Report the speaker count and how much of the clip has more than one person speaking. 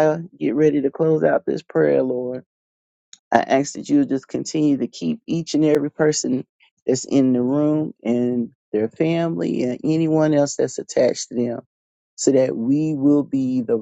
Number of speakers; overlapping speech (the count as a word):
one, no overlap